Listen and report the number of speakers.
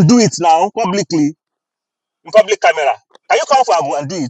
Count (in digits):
1